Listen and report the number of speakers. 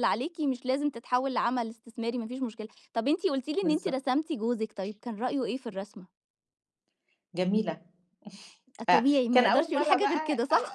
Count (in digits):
2